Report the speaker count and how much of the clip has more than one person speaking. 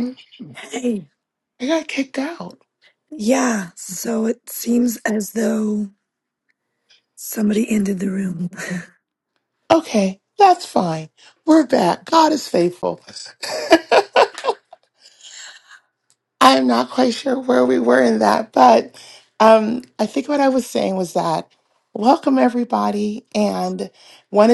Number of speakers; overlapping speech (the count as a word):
two, no overlap